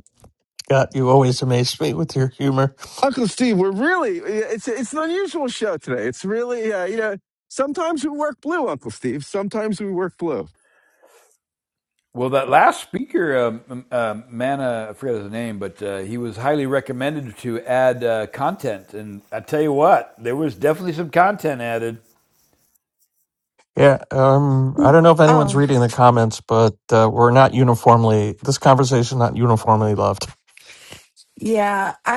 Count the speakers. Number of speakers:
four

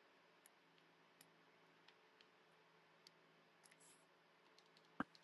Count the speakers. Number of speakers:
zero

